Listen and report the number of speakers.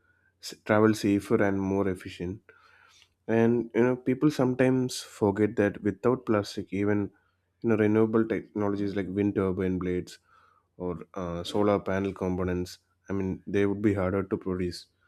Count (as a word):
one